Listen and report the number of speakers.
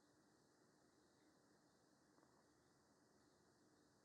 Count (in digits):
0